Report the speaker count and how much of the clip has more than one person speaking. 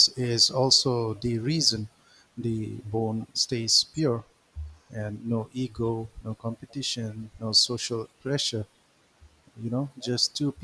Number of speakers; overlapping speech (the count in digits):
1, no overlap